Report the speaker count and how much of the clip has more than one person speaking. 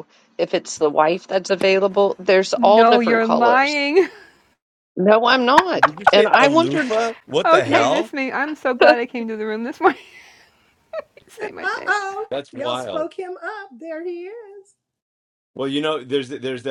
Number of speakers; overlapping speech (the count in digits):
4, about 25%